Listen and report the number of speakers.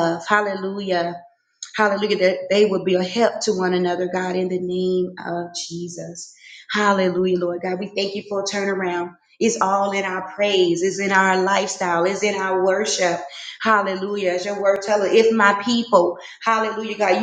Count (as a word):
one